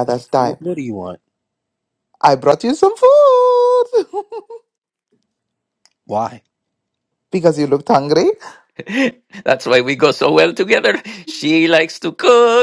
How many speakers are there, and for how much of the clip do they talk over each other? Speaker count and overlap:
three, about 1%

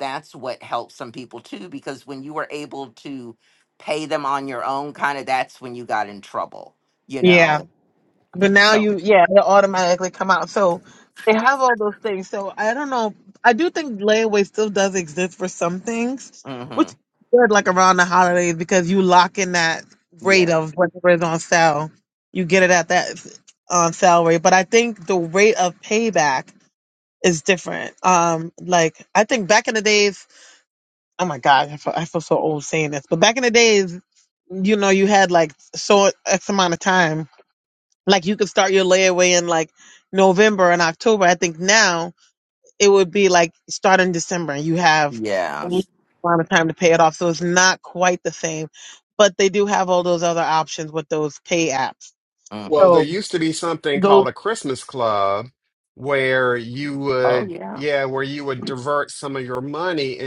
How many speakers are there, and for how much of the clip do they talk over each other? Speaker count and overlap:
three, about 4%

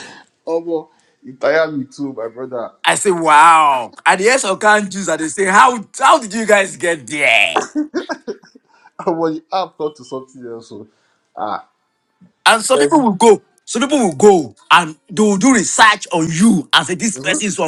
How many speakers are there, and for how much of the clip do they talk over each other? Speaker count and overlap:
two, about 3%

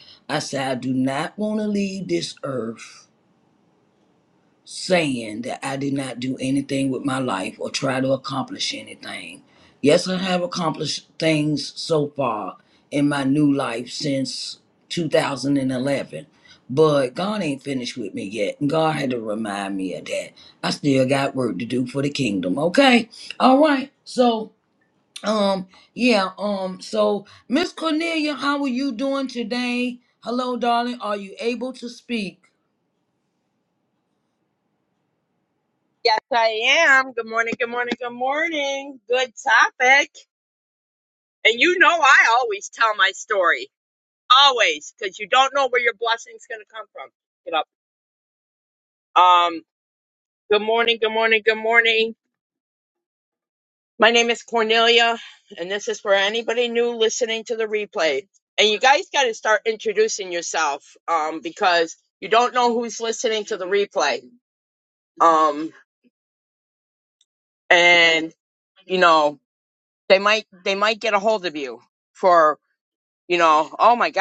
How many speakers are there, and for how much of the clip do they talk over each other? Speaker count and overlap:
two, no overlap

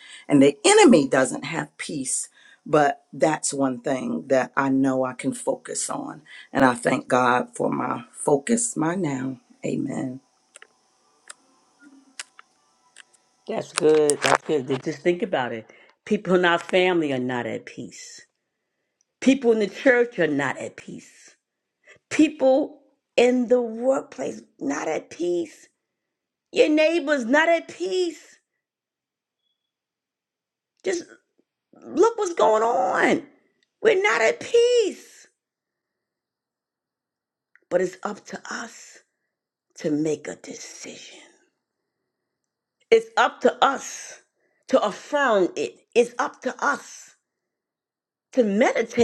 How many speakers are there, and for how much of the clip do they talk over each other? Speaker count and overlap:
two, no overlap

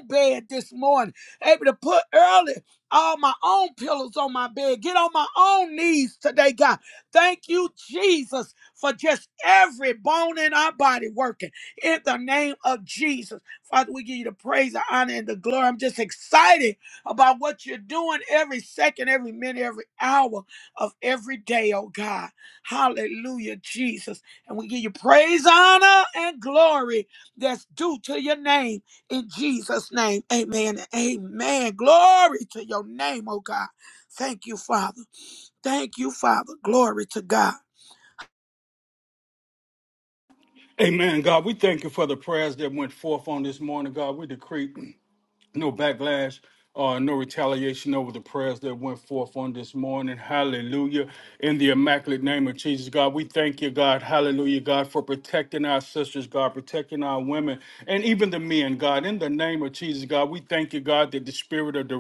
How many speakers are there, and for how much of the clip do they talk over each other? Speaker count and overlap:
two, no overlap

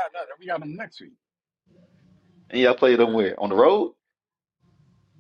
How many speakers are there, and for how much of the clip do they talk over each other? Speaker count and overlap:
two, about 7%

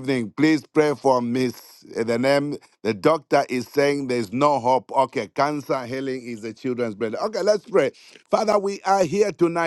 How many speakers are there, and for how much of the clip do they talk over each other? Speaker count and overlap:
one, no overlap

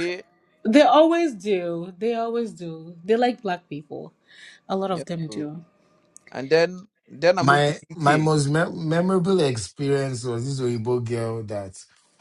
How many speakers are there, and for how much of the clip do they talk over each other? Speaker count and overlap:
three, about 11%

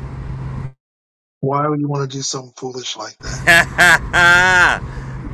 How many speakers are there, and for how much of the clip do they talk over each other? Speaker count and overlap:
two, no overlap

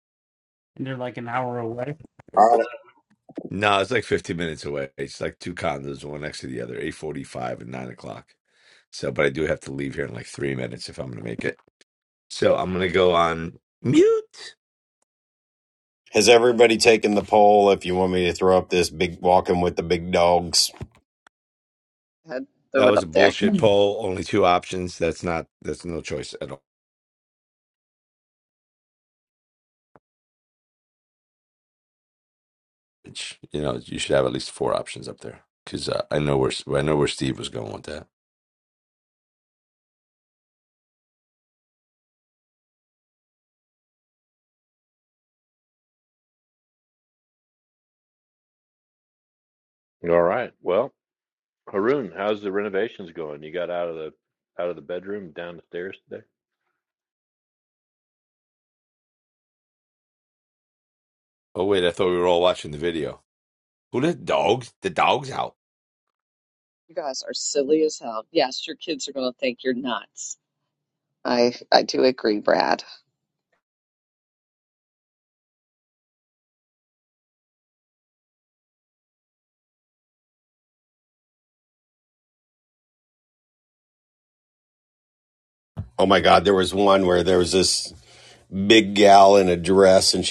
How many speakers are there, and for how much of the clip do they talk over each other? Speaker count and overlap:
five, about 1%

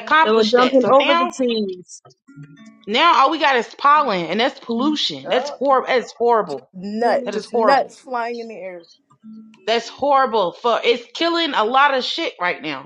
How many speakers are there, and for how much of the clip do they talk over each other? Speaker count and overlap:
three, about 19%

